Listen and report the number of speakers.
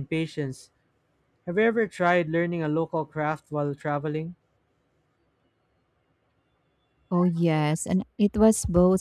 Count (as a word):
two